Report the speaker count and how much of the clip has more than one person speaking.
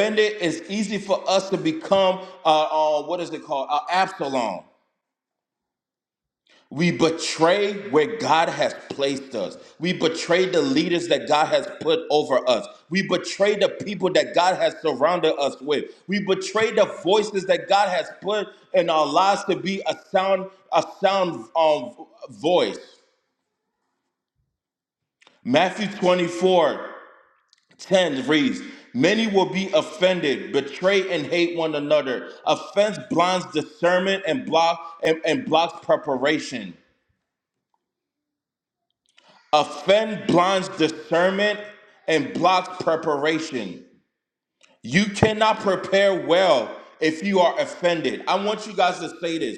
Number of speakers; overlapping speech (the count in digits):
1, no overlap